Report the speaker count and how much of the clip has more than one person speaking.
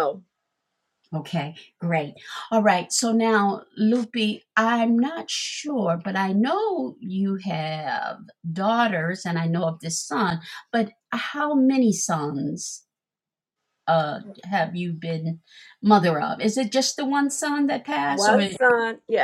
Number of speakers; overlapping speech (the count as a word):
two, about 2%